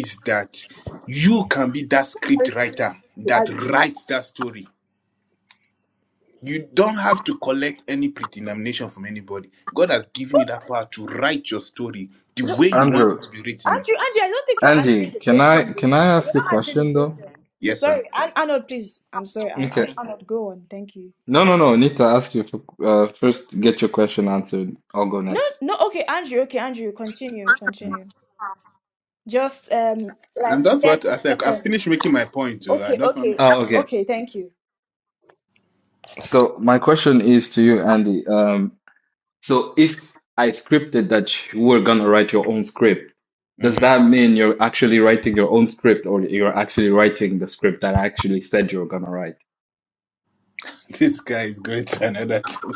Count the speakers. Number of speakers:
3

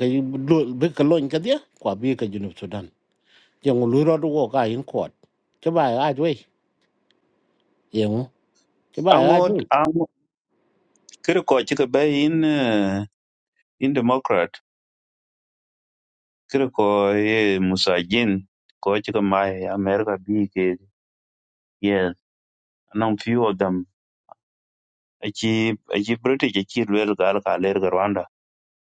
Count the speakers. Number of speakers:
2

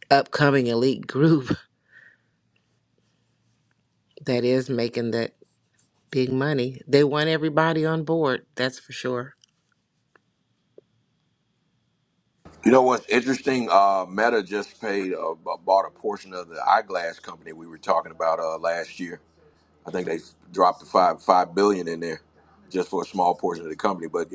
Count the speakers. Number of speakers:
2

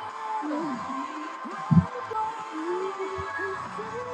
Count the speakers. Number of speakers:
0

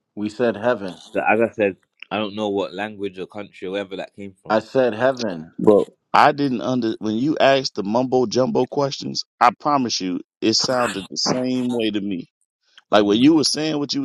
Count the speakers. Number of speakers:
3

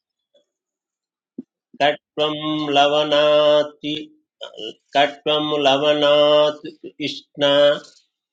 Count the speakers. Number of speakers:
1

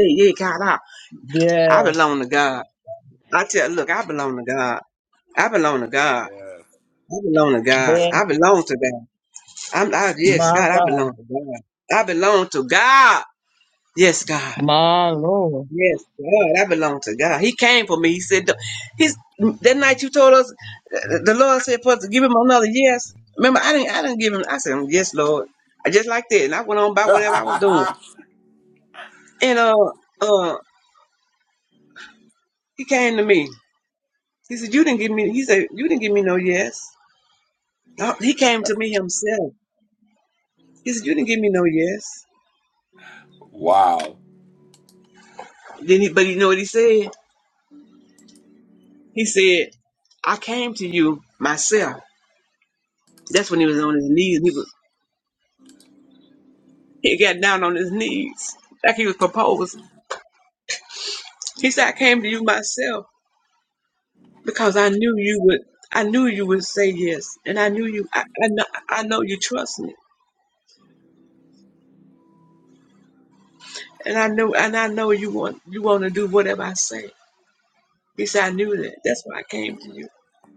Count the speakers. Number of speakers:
3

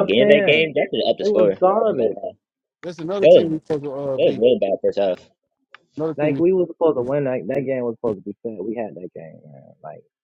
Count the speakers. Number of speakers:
3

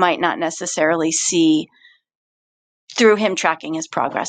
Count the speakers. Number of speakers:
1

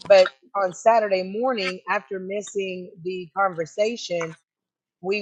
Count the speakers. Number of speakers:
1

